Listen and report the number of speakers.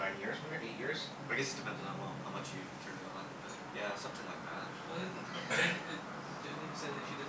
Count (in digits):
3